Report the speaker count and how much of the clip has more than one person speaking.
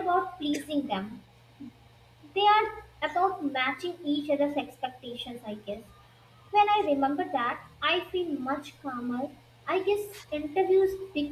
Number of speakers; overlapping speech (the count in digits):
1, no overlap